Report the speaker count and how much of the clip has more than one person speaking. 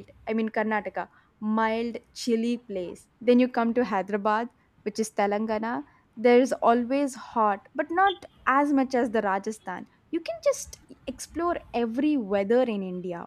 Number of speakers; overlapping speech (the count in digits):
1, no overlap